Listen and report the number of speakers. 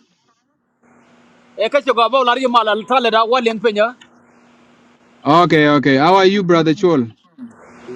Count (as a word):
two